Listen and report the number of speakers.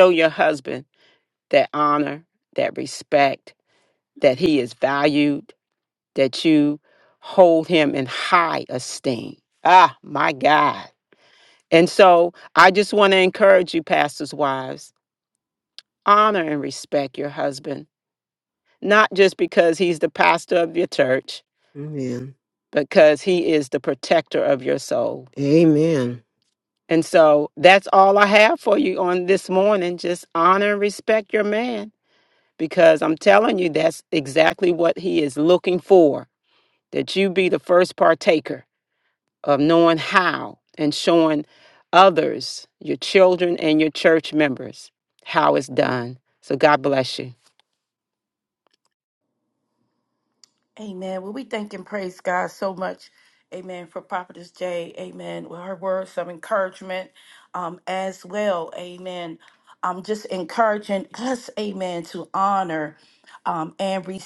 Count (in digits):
3